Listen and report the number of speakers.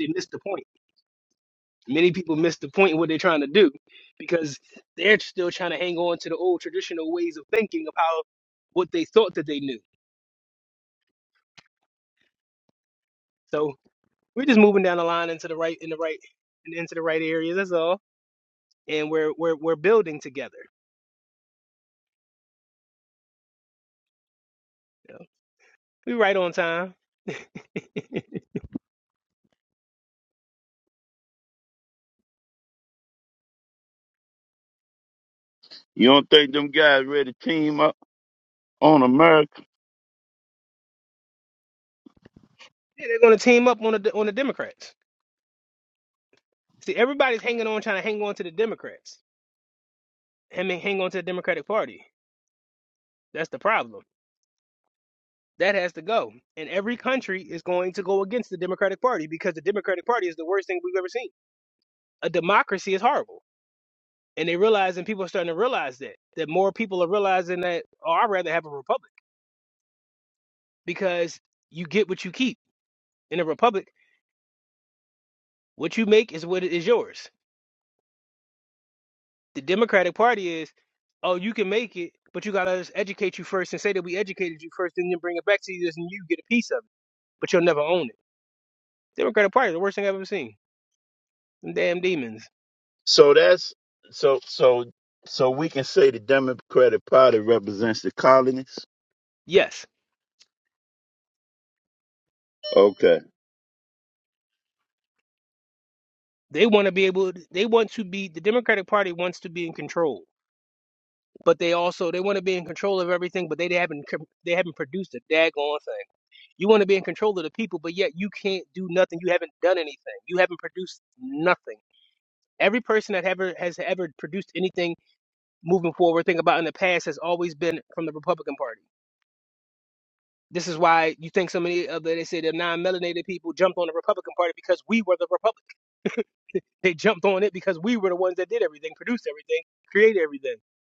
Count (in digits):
2